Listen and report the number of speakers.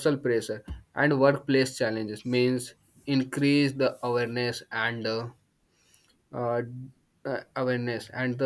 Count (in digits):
1